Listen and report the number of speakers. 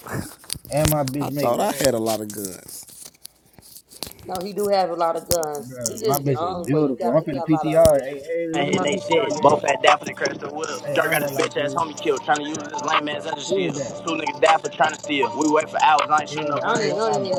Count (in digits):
4